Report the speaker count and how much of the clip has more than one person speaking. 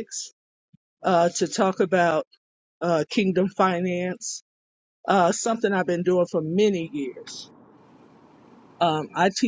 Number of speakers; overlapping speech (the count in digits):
1, no overlap